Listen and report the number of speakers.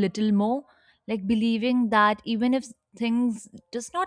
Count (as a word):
one